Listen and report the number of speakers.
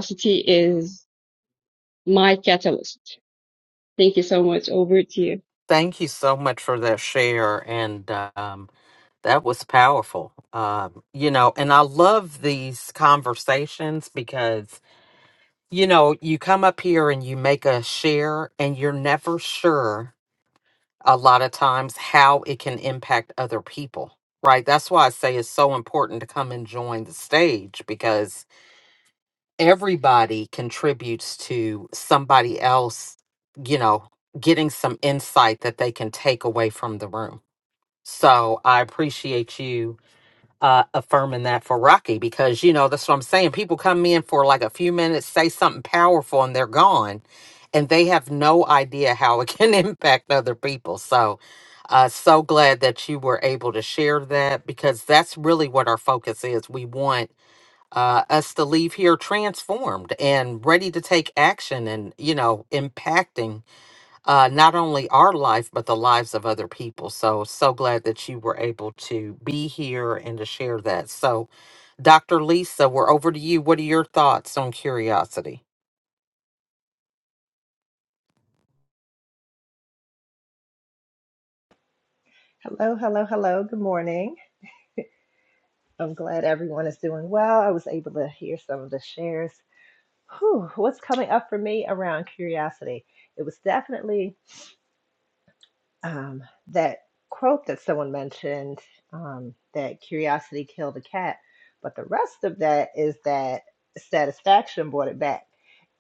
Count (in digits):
3